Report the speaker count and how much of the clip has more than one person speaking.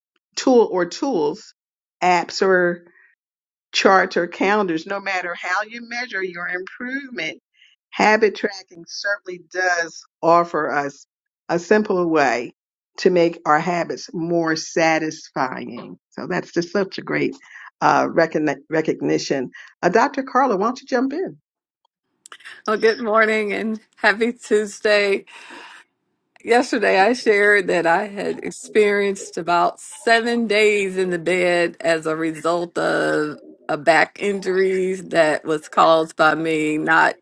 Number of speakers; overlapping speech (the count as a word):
two, no overlap